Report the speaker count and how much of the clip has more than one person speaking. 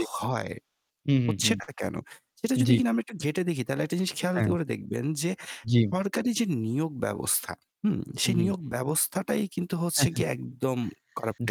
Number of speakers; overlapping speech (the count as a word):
two, about 12%